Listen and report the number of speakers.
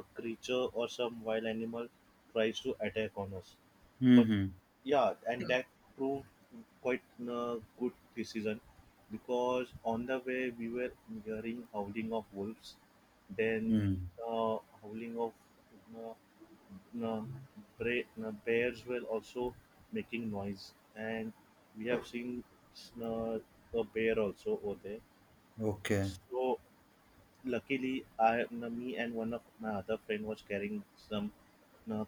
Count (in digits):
2